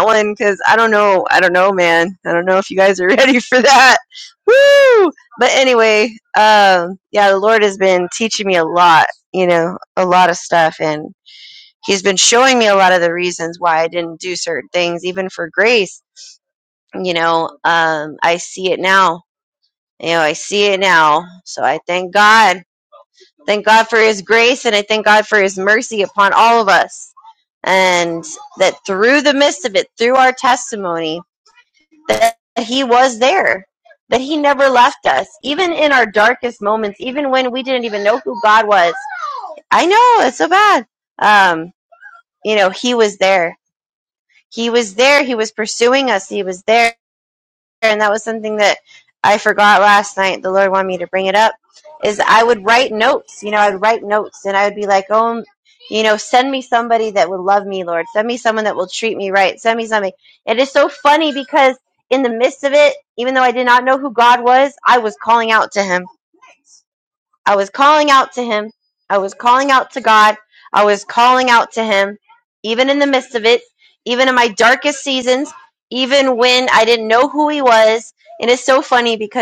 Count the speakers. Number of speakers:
1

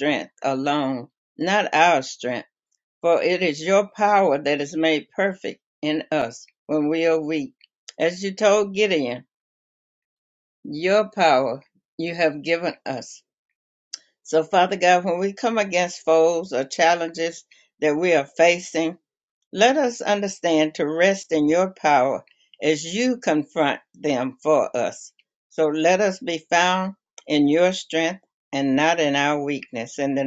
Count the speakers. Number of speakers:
1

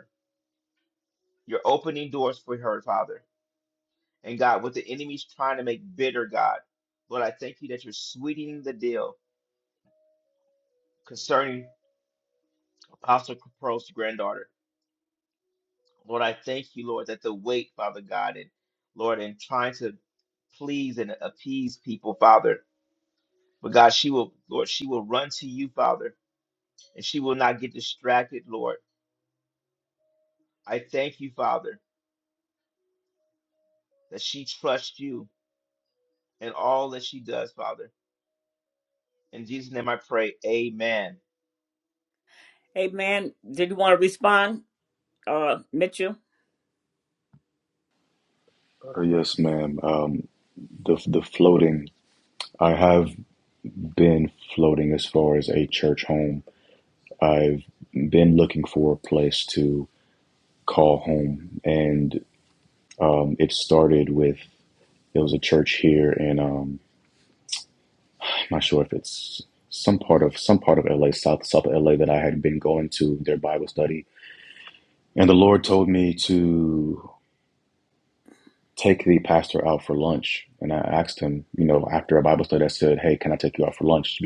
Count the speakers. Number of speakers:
3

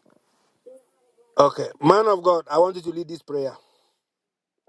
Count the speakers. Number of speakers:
1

